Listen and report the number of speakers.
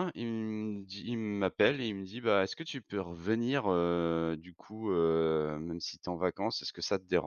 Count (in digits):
1